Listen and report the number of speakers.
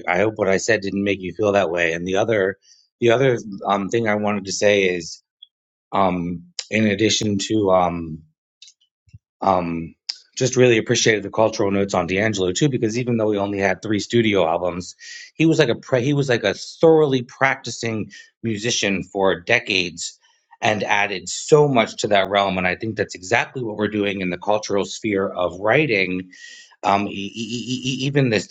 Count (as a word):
one